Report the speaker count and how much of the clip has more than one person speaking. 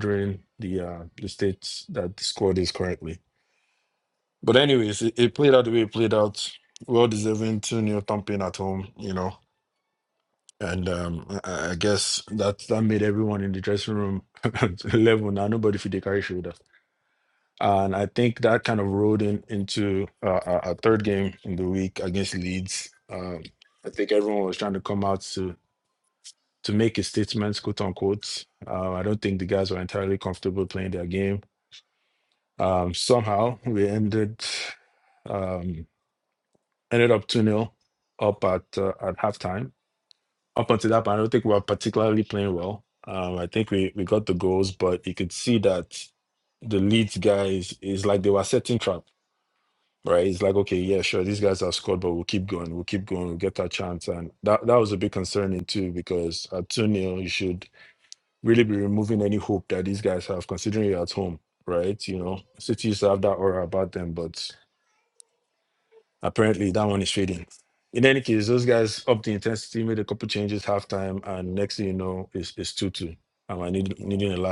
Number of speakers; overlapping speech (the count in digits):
1, no overlap